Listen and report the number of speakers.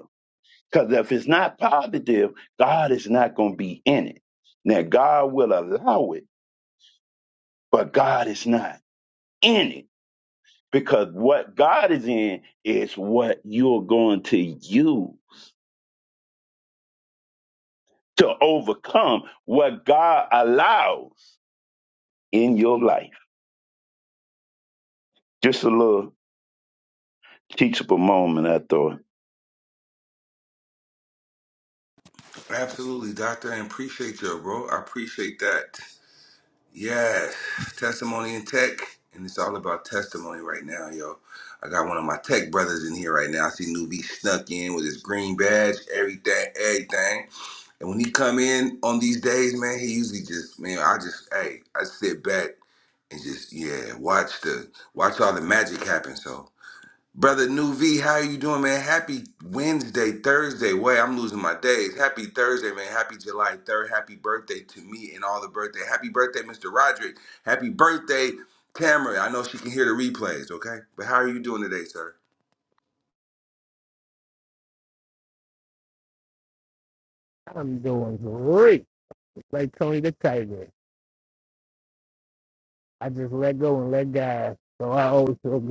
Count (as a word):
three